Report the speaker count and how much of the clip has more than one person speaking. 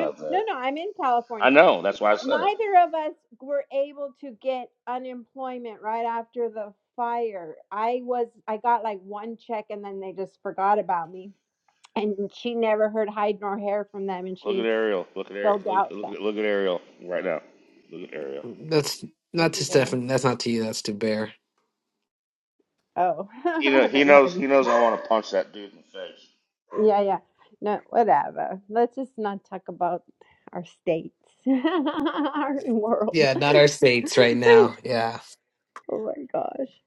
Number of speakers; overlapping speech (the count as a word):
three, about 10%